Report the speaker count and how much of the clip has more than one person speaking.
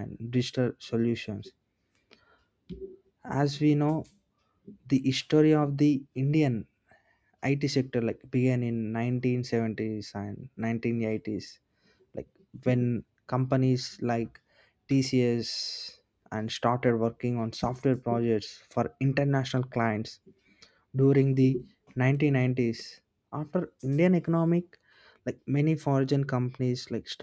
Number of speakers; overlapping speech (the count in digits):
1, no overlap